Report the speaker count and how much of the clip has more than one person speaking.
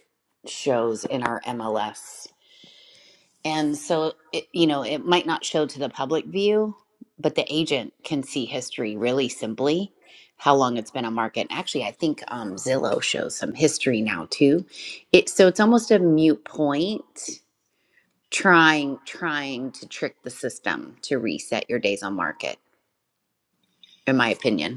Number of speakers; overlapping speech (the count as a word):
one, no overlap